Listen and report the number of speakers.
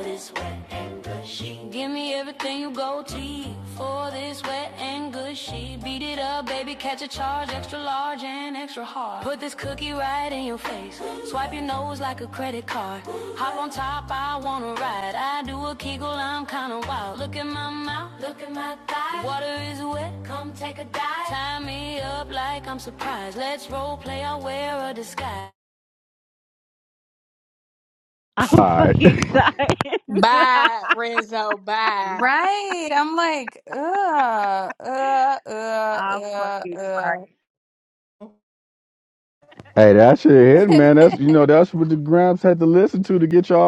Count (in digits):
5